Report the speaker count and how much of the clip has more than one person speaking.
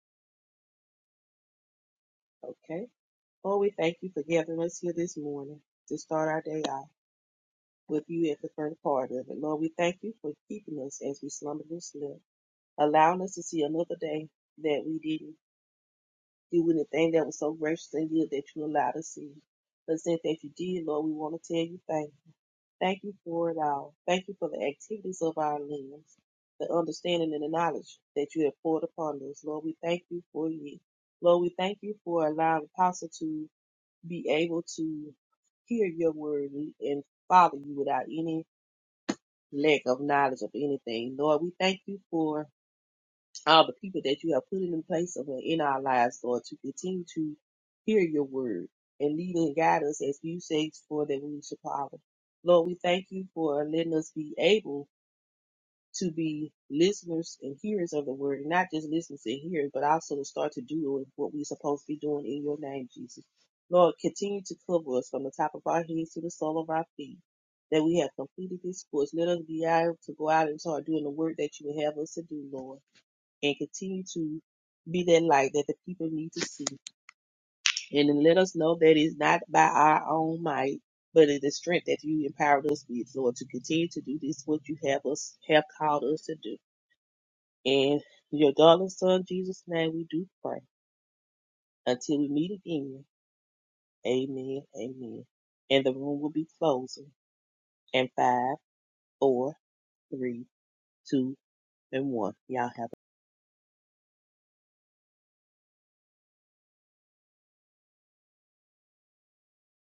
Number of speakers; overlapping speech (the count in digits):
1, no overlap